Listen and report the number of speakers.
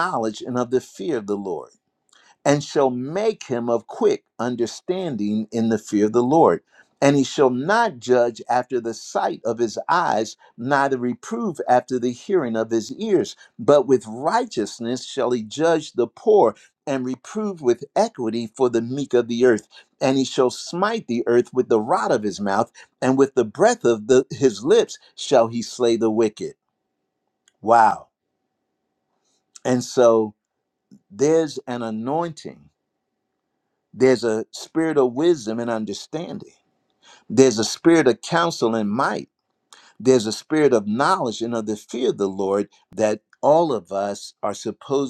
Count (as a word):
one